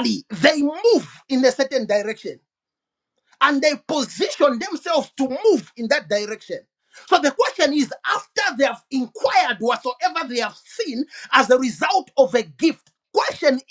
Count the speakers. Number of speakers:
one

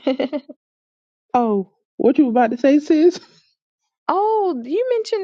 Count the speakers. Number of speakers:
two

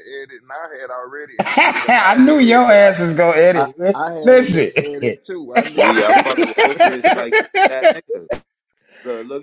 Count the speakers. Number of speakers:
three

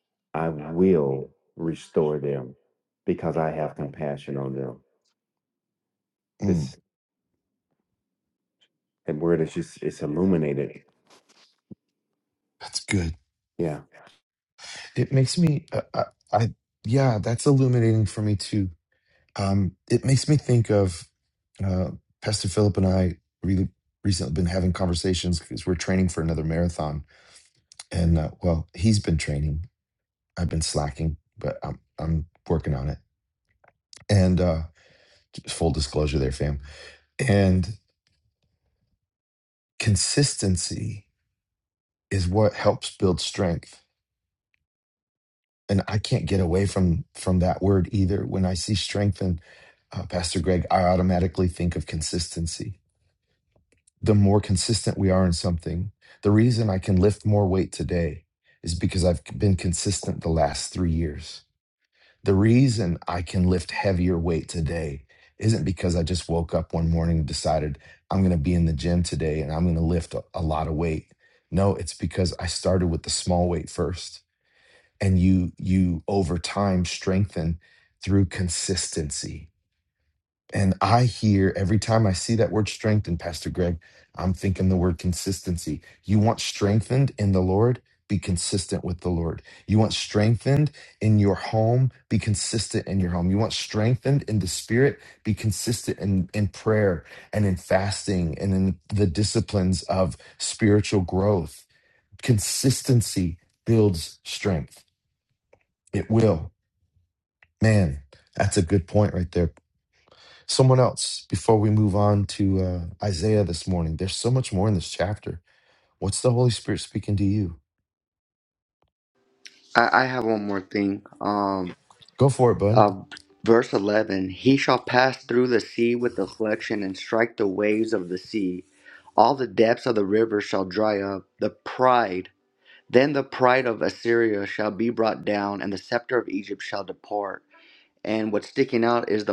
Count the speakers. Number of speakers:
three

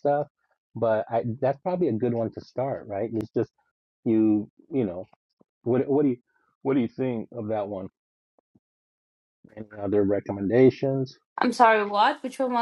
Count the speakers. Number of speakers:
two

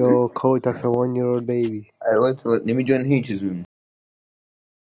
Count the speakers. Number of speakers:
two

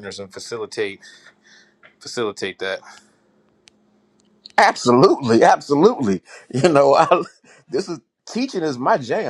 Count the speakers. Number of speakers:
two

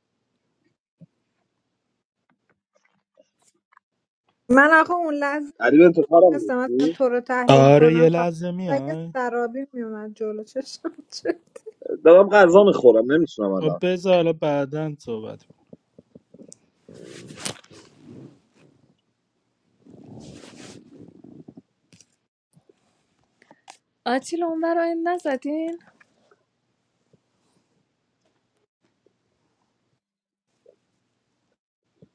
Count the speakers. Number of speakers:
four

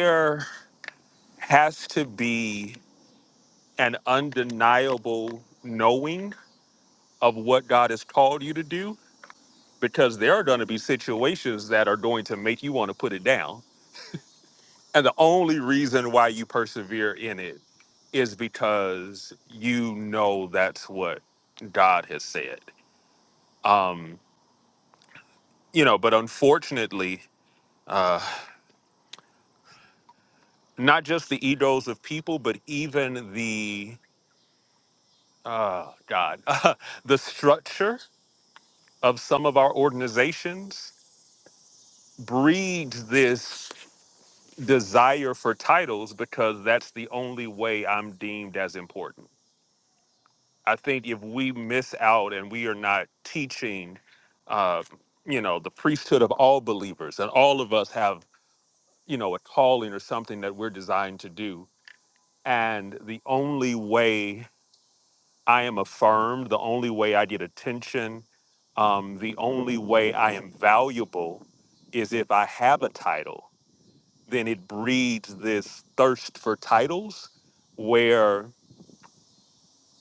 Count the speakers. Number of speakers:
one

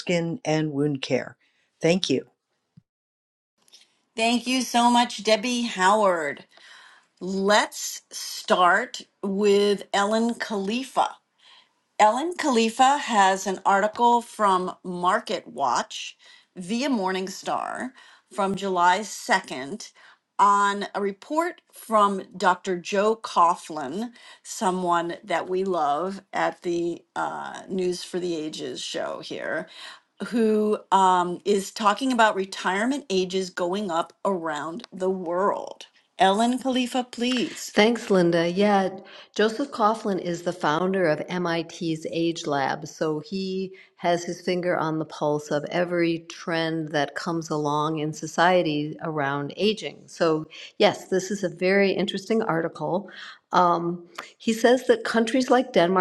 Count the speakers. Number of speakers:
three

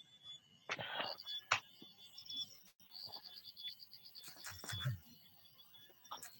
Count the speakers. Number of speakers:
zero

